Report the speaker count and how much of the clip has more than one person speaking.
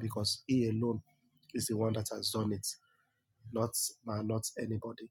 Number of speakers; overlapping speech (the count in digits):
1, no overlap